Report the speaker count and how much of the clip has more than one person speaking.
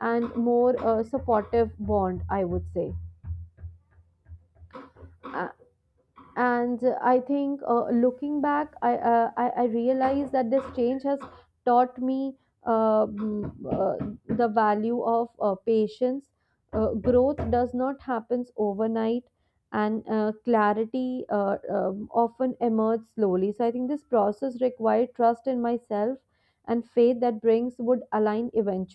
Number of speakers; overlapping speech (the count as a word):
one, no overlap